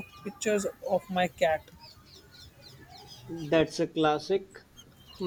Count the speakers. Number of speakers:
2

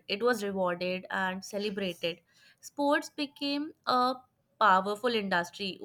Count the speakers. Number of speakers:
1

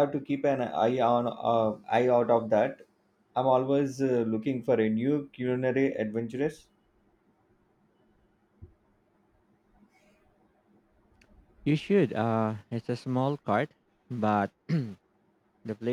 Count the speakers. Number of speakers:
2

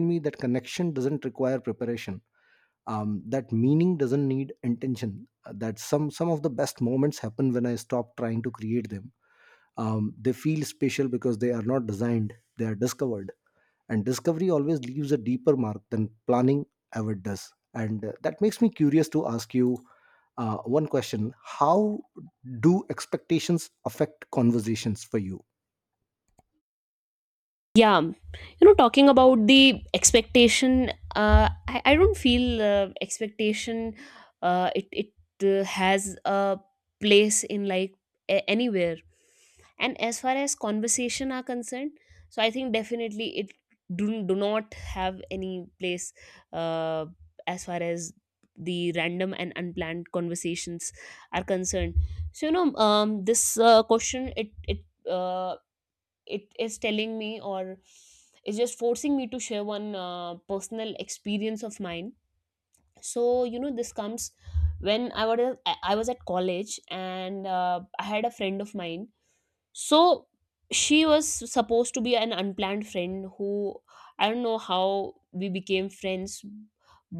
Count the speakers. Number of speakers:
2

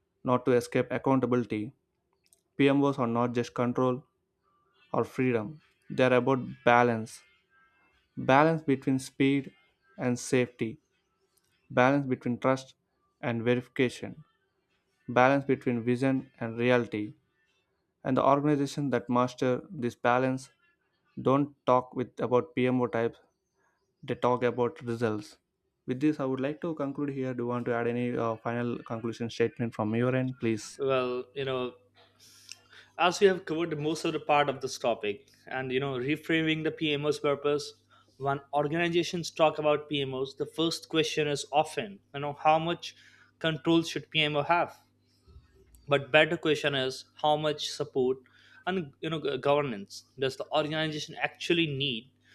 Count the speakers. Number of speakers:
2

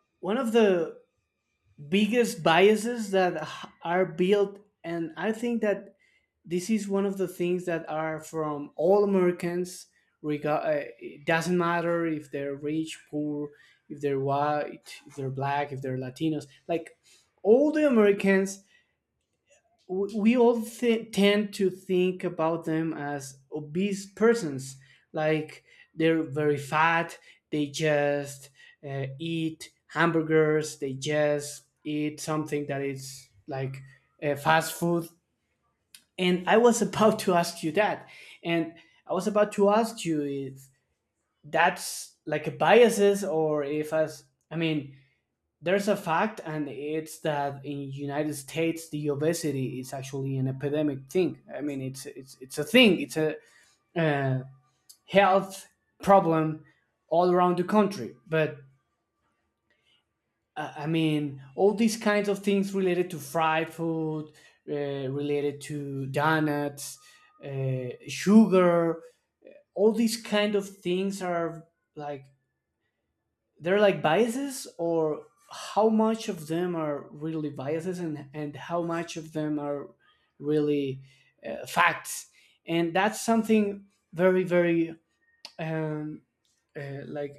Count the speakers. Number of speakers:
1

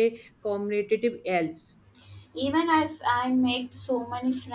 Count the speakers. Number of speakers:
2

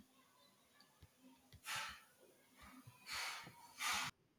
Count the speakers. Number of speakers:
0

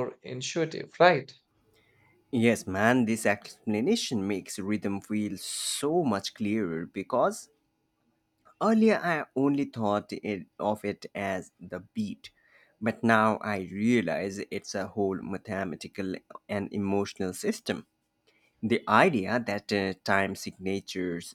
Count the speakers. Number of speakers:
2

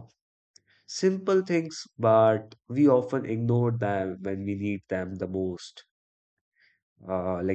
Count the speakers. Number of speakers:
1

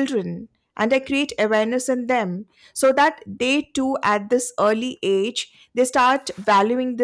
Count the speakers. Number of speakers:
1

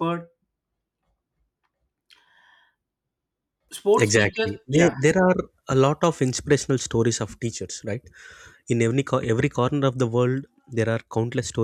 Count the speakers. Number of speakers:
2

